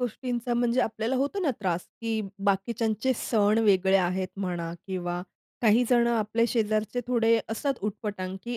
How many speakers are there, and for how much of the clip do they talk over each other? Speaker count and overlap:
one, no overlap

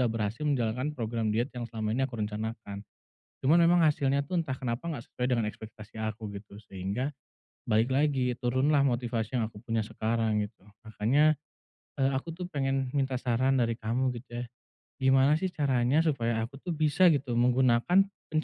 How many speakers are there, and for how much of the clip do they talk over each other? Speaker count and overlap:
one, no overlap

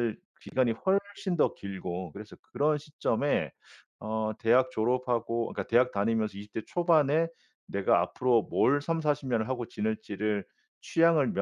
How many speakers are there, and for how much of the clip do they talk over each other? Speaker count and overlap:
one, no overlap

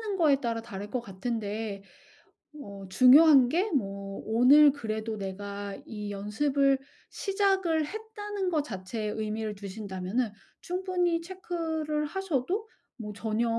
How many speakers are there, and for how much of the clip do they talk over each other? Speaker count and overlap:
one, no overlap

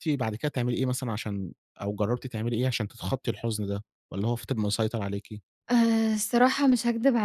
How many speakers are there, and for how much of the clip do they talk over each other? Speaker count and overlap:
two, no overlap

